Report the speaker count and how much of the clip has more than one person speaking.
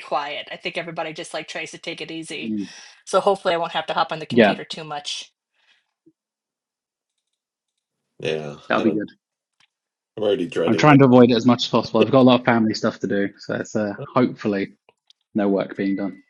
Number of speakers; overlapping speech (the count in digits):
3, about 5%